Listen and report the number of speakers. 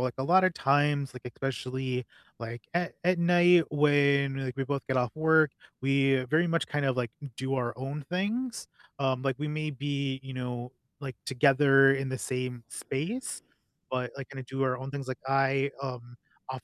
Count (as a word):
one